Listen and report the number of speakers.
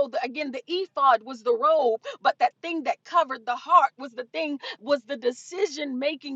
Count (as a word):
one